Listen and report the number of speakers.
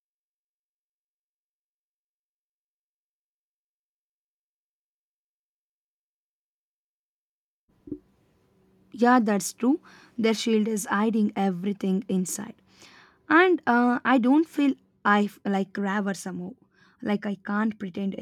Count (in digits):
1